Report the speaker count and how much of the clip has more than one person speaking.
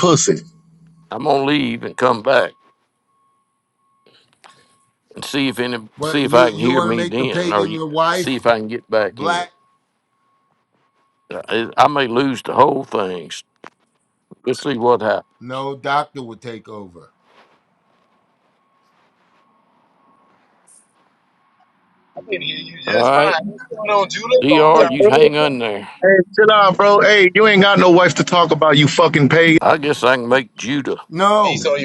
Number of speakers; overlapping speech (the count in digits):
4, about 13%